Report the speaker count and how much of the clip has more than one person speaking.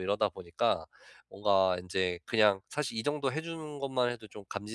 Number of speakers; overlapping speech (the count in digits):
1, no overlap